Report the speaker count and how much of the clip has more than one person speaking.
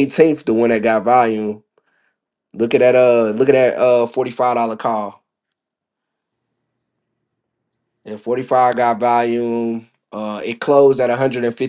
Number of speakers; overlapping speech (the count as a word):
one, no overlap